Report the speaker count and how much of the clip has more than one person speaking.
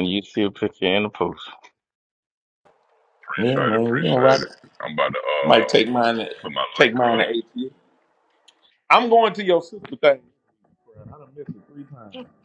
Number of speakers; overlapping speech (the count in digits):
3, about 16%